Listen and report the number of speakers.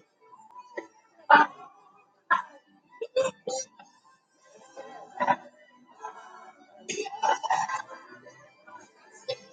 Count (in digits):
0